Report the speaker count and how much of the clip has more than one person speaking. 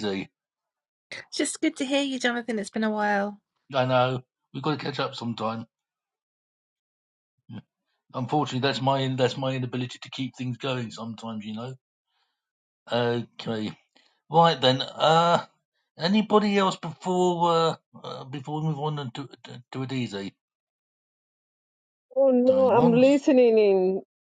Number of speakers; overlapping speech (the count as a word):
three, about 3%